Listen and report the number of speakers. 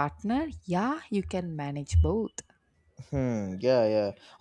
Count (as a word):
two